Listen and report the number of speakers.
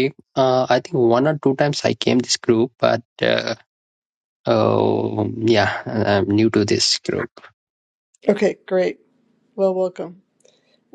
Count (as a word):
two